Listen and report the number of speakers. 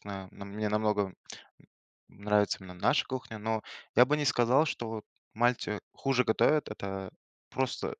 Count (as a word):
one